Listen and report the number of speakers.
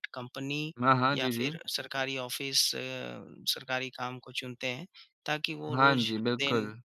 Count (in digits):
2